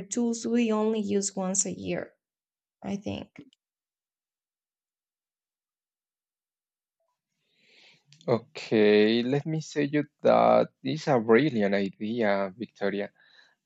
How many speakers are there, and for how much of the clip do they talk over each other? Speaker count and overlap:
2, no overlap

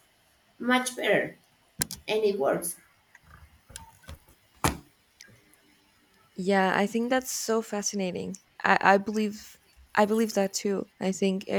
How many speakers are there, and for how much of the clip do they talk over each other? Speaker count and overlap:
2, no overlap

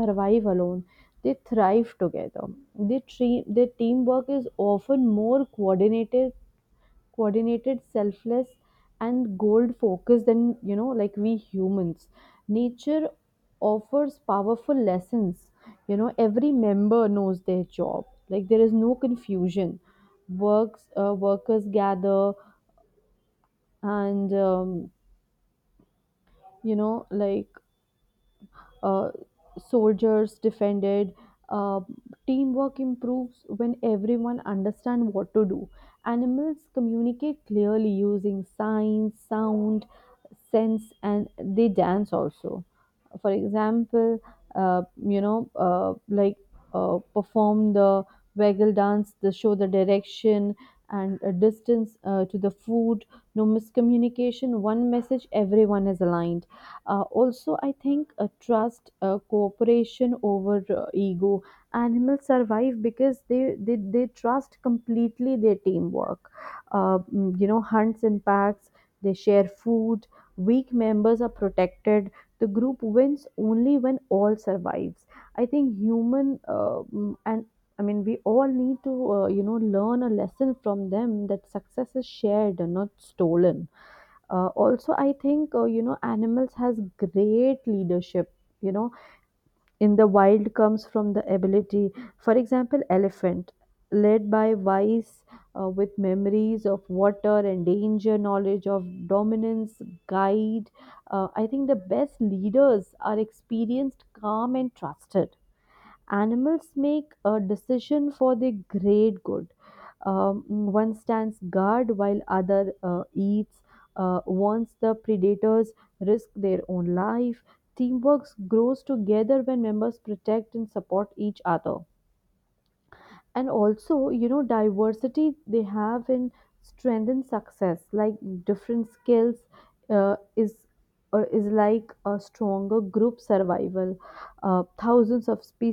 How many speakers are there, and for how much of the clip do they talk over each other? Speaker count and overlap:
1, no overlap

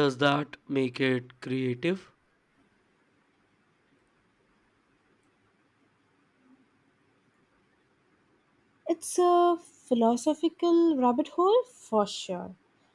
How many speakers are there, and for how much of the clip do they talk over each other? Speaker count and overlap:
2, no overlap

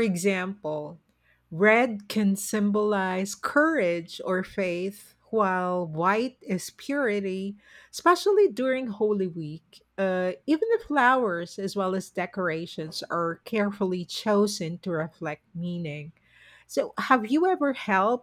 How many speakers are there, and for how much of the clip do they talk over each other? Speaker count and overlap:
1, no overlap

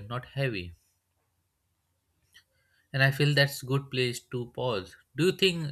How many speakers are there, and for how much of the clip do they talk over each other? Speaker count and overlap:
1, no overlap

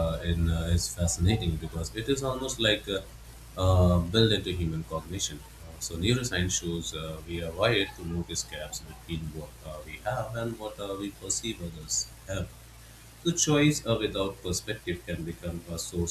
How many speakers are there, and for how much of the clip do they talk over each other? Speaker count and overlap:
1, no overlap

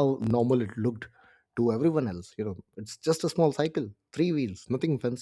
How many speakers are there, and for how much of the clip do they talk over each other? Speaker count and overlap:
1, no overlap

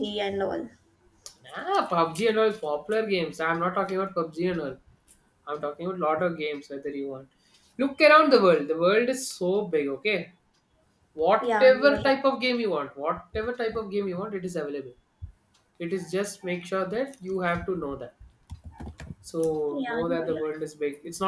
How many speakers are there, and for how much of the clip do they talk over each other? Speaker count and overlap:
2, about 7%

